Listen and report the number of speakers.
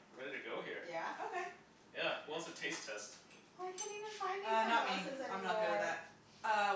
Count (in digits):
3